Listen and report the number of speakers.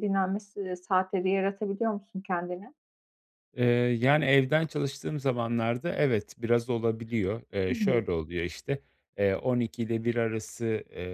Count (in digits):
2